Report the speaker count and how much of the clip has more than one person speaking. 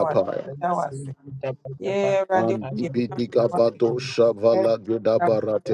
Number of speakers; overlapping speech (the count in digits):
2, about 24%